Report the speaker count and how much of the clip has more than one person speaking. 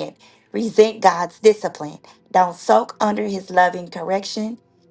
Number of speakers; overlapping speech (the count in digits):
1, no overlap